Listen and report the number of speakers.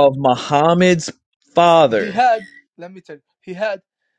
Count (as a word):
two